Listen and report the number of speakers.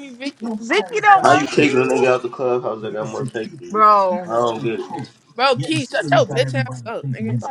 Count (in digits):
3